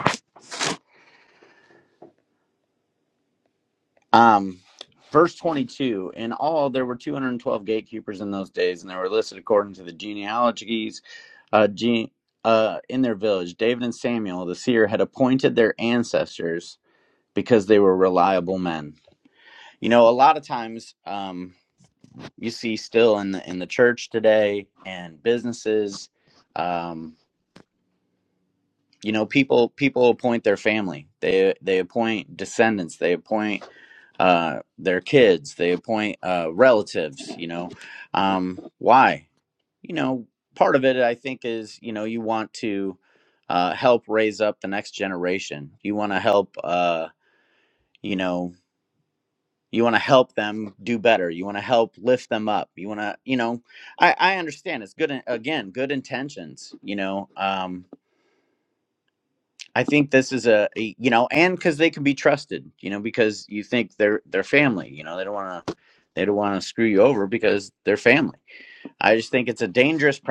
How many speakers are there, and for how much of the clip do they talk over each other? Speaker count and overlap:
one, no overlap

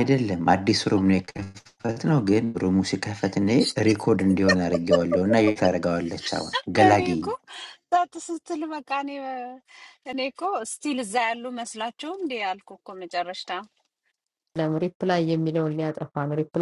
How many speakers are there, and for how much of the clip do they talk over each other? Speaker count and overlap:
three, about 3%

